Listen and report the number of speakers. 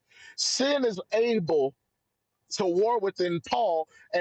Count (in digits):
1